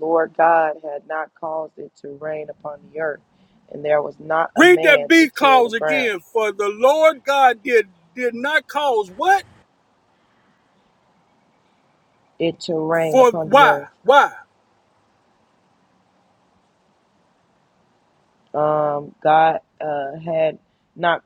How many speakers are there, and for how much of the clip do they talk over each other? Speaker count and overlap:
2, about 11%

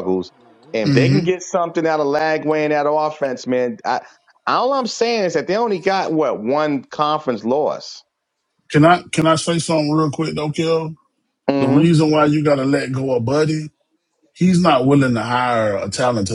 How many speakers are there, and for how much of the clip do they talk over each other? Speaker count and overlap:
2, about 4%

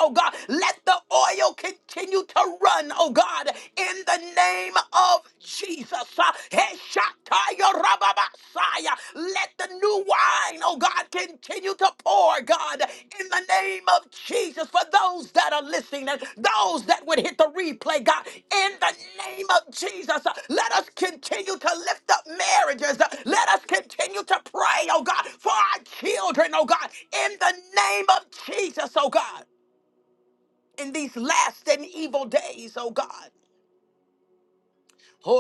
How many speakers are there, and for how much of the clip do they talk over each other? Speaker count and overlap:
1, no overlap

